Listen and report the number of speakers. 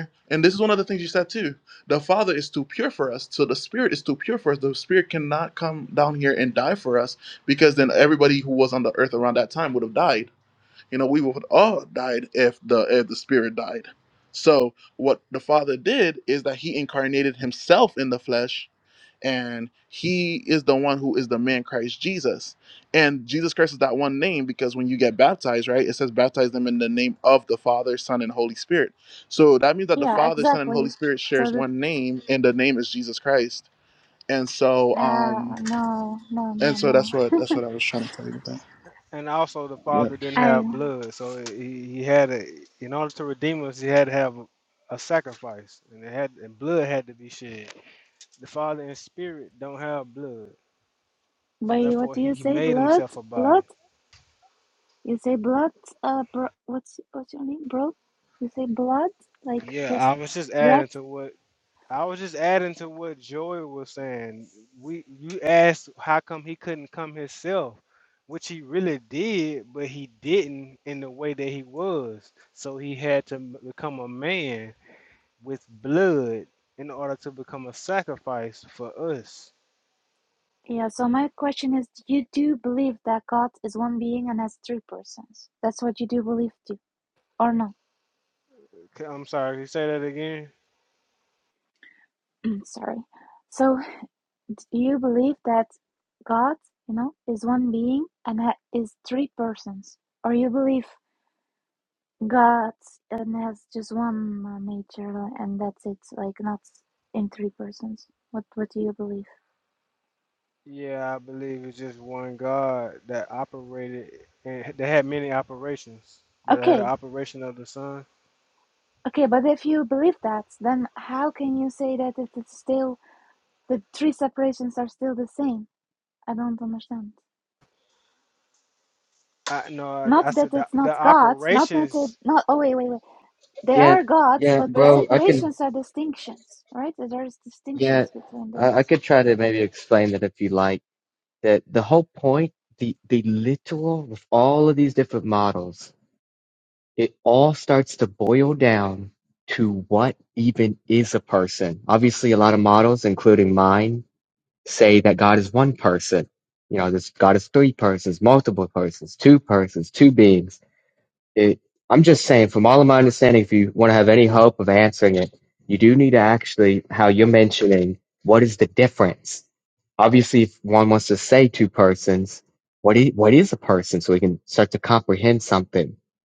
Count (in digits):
4